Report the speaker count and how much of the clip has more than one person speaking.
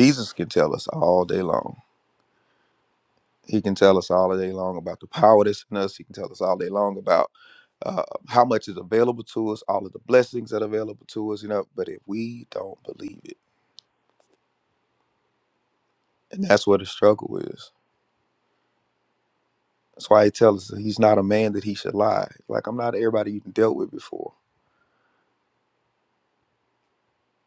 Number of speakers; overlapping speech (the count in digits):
1, no overlap